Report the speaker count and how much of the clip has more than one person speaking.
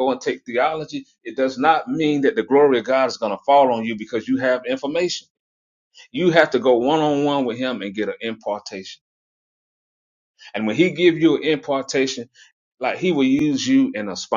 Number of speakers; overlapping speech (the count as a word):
one, no overlap